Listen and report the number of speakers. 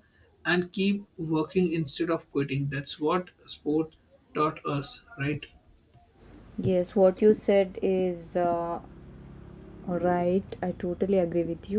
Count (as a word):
two